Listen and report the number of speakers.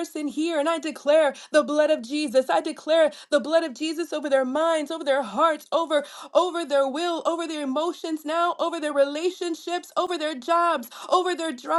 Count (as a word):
one